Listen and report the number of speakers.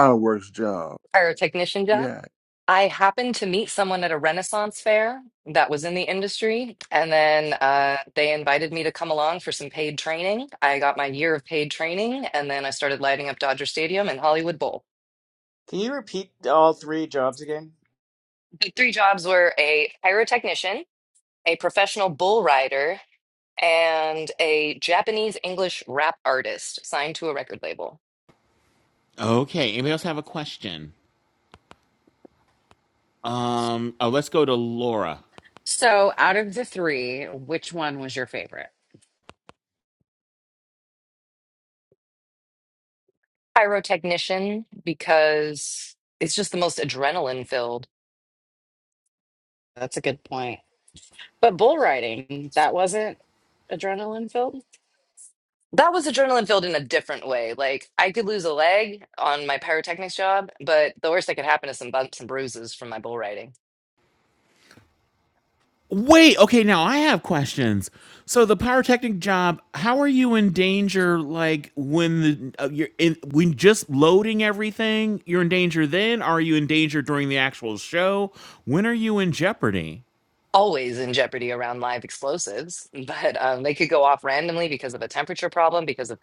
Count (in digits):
5